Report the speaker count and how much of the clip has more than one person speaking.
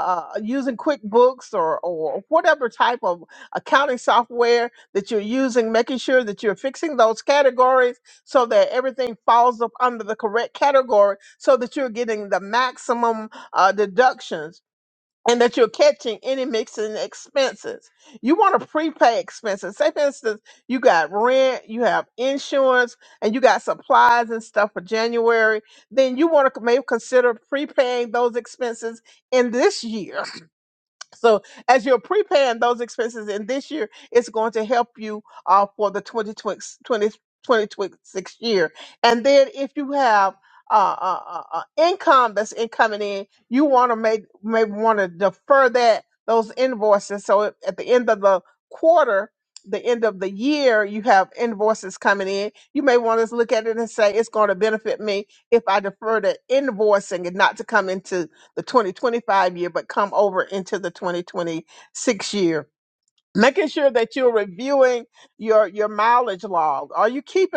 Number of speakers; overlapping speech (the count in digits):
1, no overlap